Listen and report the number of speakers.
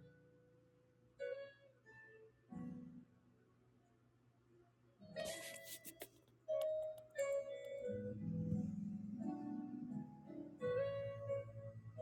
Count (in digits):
0